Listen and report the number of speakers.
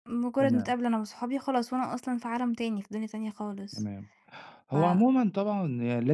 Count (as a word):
two